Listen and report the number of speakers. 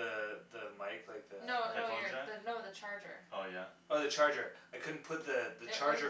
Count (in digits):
3